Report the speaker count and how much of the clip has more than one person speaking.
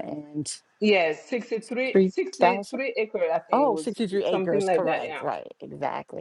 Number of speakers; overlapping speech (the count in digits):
2, about 43%